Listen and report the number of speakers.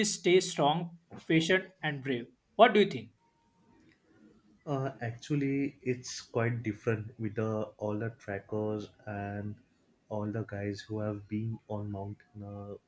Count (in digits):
2